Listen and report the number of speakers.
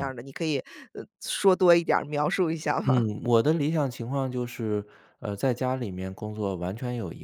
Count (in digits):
2